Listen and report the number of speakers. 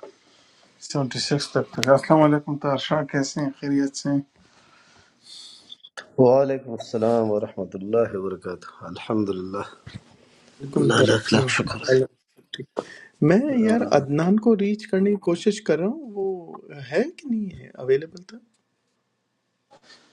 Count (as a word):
three